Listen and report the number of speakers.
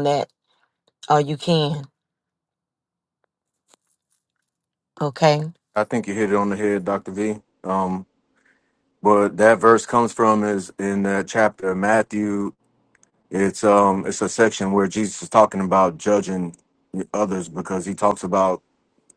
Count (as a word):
two